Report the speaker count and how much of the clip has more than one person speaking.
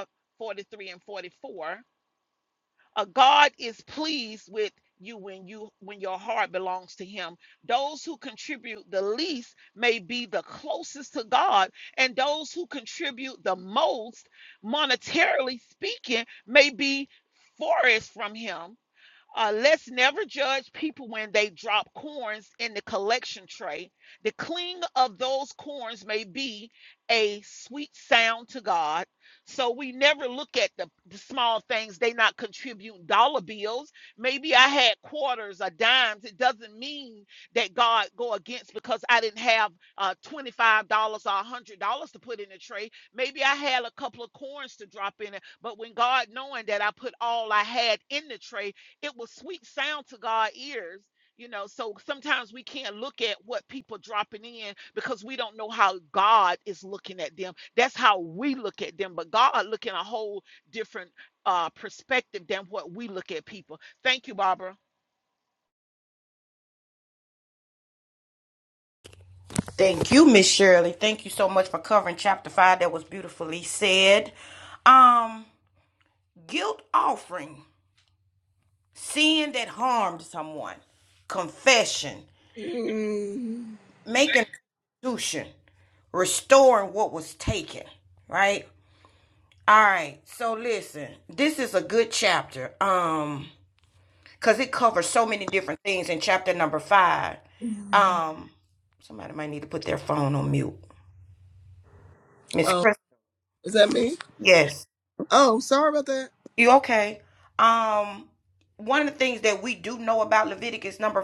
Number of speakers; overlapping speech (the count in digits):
3, under 1%